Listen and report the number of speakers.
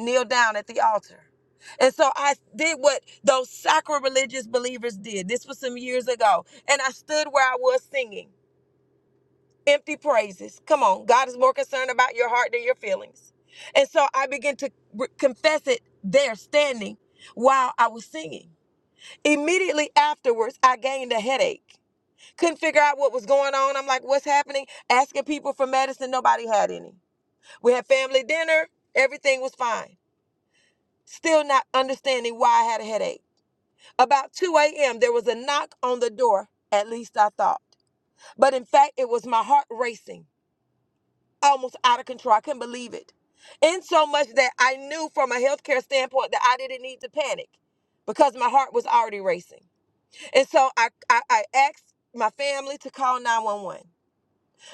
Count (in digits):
1